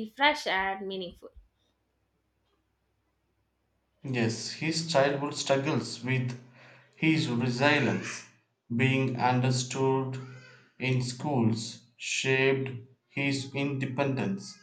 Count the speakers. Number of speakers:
two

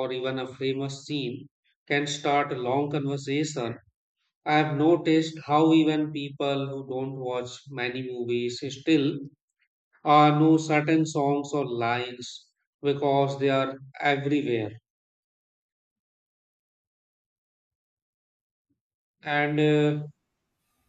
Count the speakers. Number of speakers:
one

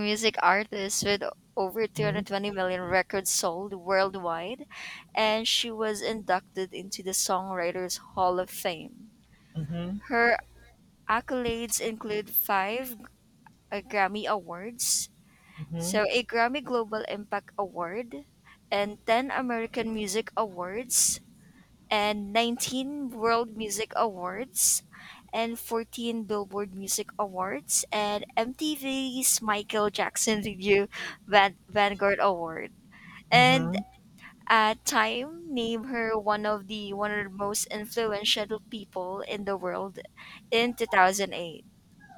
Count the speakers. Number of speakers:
two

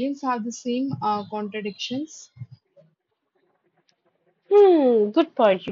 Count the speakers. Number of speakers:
two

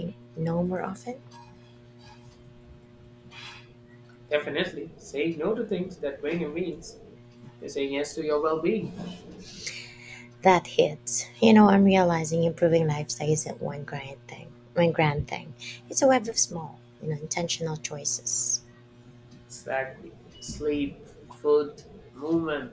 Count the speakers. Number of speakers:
two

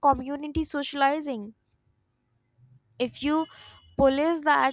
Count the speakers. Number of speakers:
one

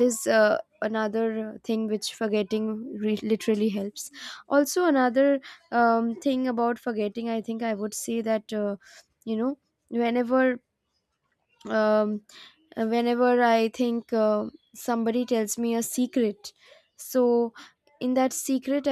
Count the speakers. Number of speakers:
one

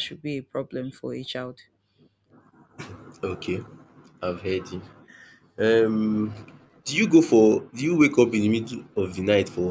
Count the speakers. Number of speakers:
two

